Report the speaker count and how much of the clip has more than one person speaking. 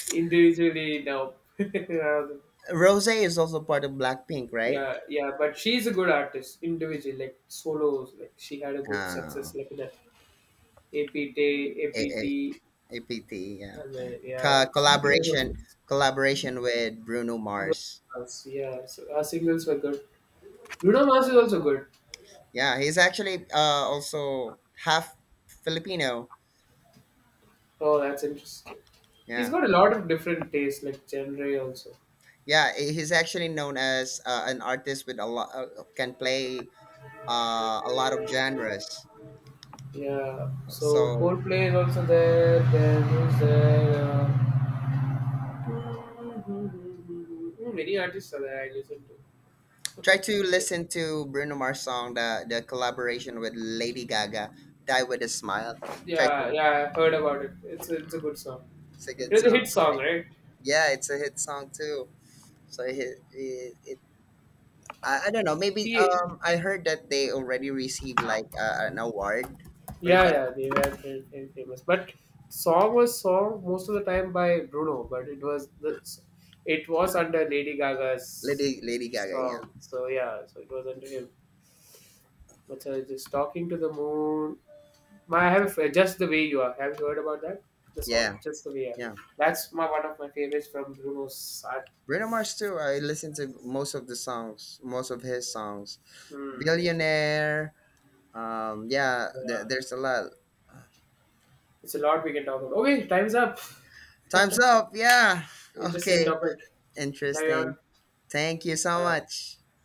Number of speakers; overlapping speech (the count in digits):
2, about 8%